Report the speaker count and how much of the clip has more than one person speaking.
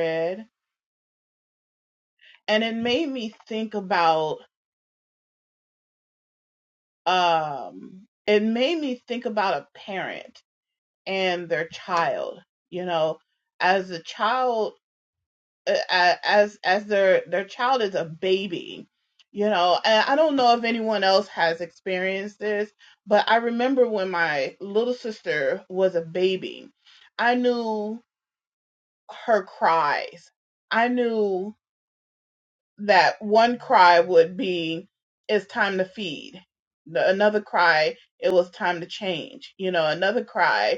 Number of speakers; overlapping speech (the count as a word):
one, no overlap